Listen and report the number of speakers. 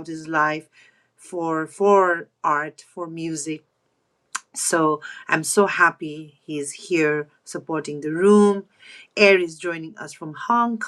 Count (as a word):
one